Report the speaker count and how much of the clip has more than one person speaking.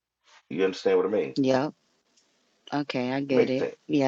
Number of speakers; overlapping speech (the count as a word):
two, about 11%